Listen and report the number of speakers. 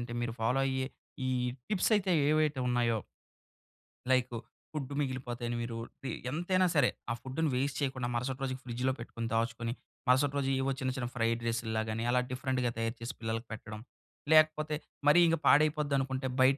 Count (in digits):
1